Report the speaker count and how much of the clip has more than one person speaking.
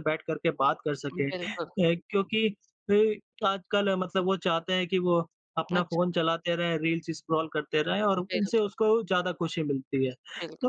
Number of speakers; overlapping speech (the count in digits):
2, about 11%